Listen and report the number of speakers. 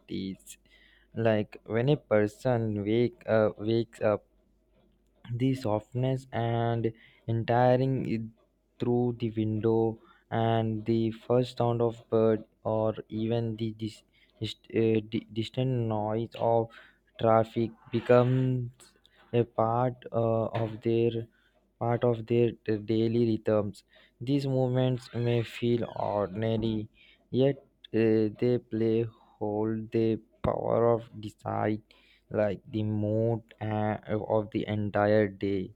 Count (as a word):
one